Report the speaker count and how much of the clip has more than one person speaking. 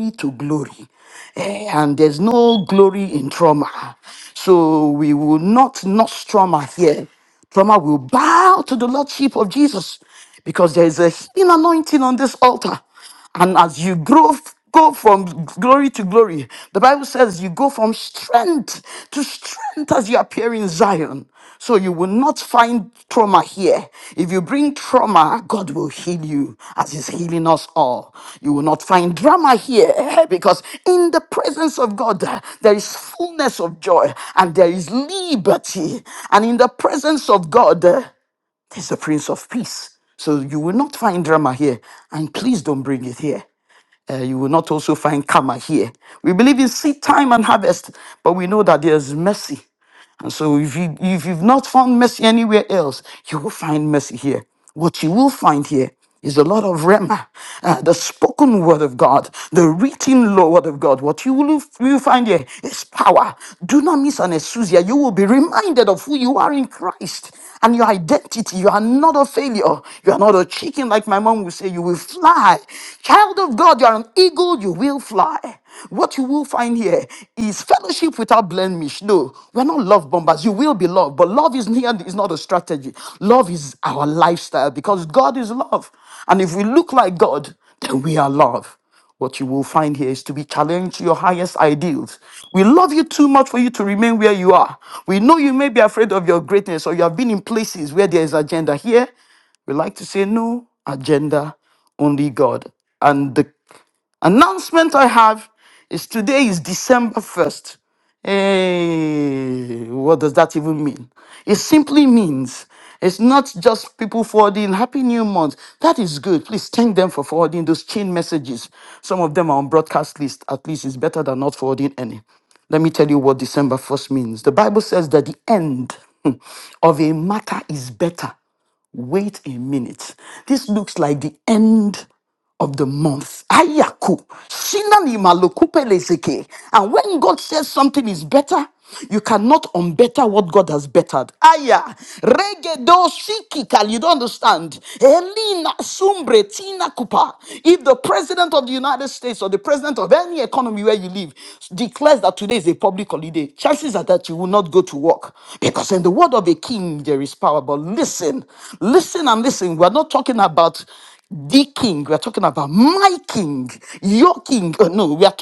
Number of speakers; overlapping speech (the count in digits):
1, no overlap